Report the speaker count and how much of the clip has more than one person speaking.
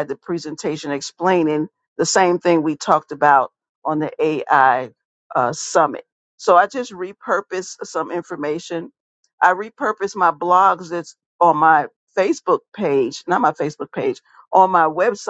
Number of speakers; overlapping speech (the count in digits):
1, no overlap